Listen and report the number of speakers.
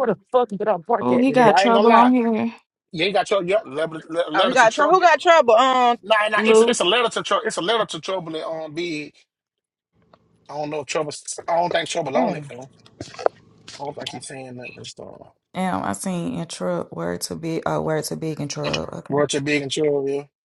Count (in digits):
4